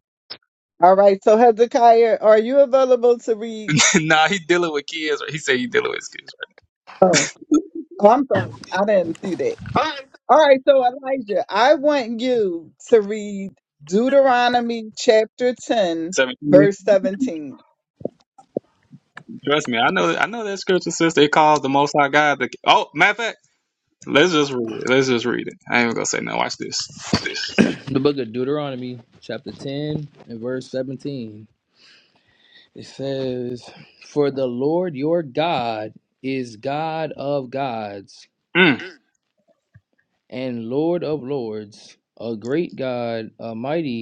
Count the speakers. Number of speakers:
3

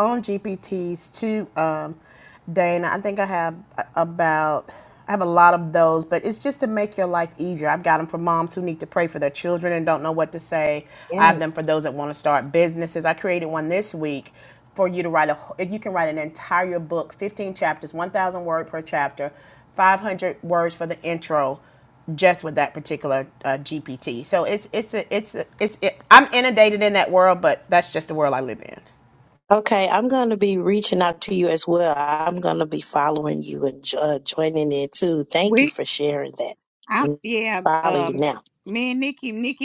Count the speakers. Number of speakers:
3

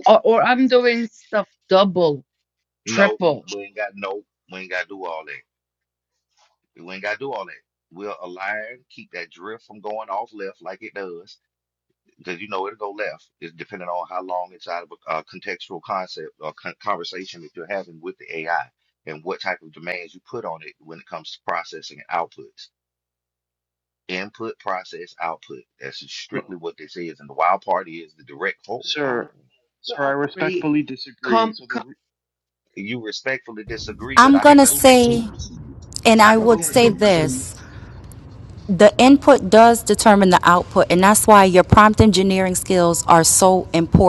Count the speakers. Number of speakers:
4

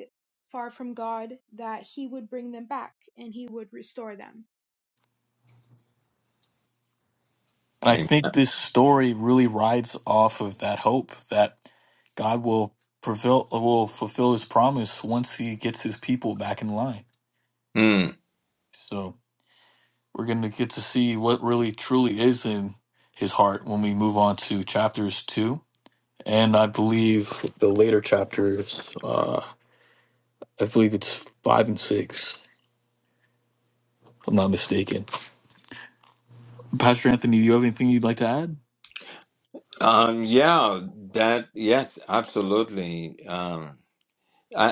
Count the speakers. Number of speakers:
3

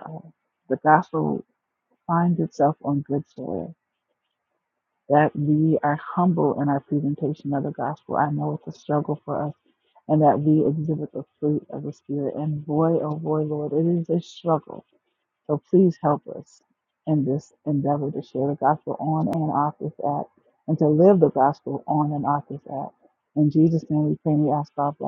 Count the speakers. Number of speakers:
1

